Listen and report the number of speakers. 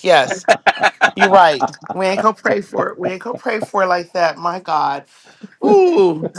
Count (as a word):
one